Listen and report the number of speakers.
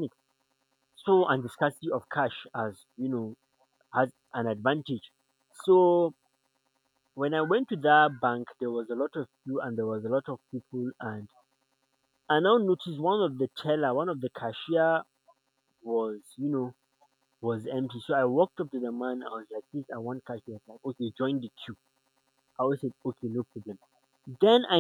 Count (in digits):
1